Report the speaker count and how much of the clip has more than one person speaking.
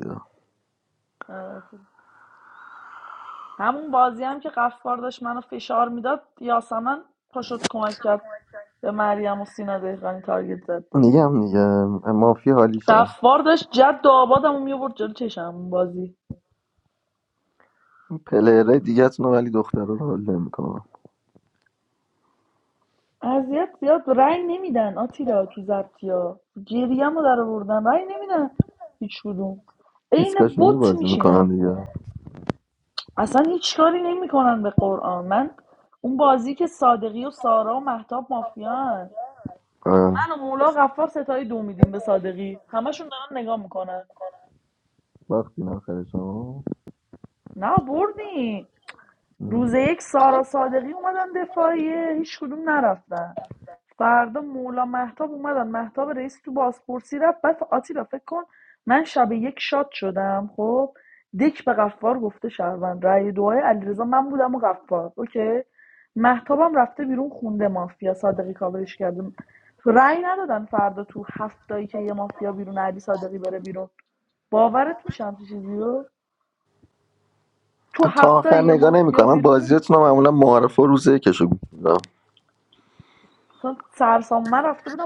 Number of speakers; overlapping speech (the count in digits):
2, about 4%